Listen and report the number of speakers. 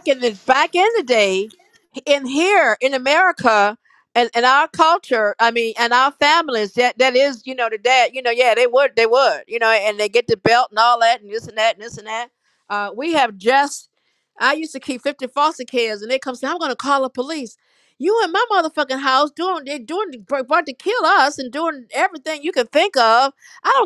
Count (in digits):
1